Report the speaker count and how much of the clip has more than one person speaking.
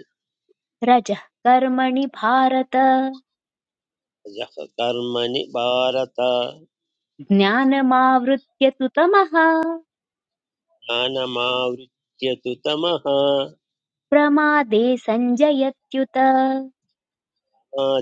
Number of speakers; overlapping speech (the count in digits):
2, no overlap